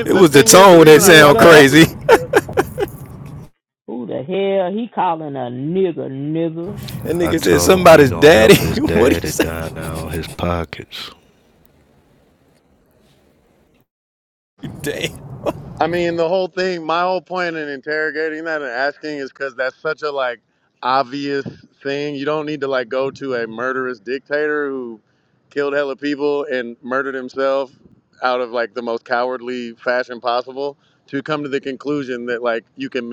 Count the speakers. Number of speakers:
4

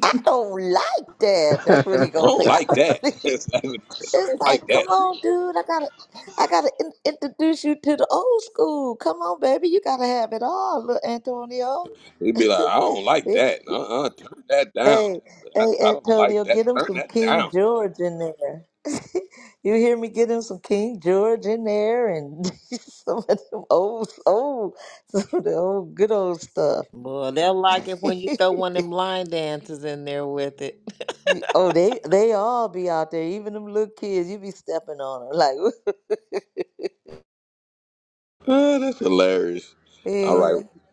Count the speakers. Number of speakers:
3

